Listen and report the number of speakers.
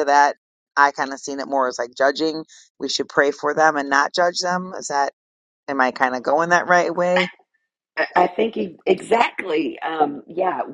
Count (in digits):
2